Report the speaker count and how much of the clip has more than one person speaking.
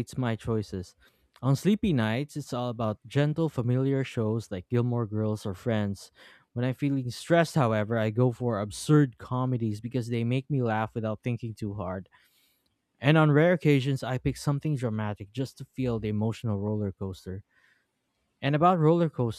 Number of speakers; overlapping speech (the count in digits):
1, no overlap